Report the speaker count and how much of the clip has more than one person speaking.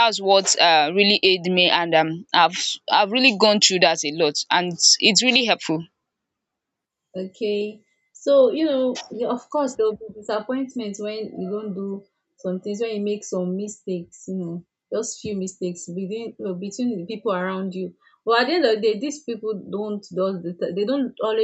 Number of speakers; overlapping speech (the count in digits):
2, no overlap